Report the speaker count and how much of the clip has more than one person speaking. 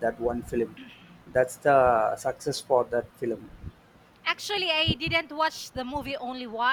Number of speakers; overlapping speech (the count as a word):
two, no overlap